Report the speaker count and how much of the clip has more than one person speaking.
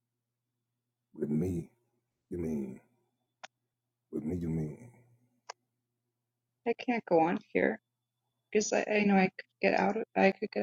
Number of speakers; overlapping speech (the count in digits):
2, no overlap